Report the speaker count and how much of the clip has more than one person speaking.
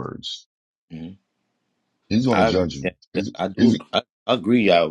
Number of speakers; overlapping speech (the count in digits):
2, about 31%